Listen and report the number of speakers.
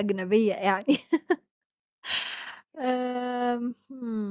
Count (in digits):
1